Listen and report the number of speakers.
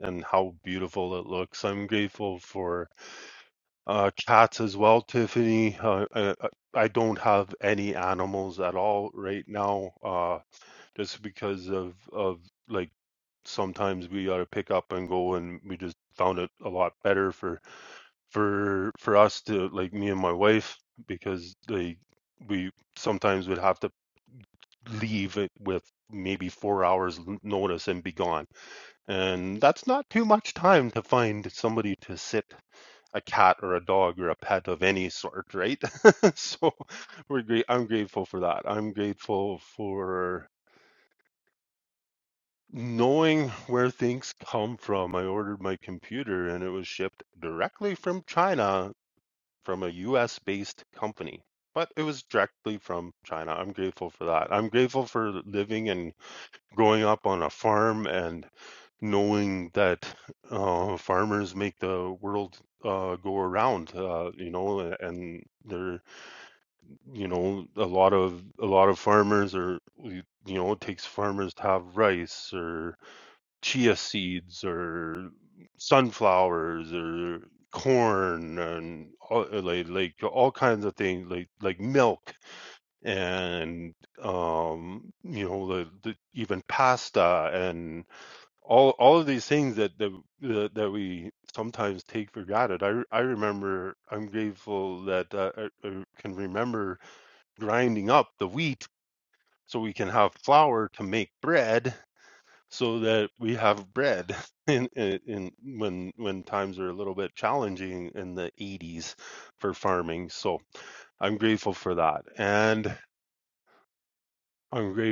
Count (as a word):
one